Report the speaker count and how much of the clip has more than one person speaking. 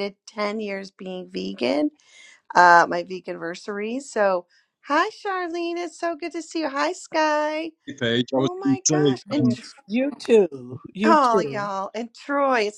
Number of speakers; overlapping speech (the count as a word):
three, about 15%